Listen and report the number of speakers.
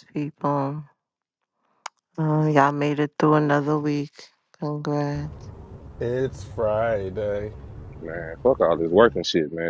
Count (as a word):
three